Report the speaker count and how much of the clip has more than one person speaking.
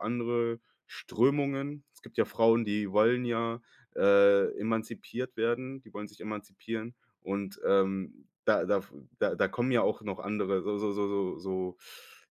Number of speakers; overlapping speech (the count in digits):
1, no overlap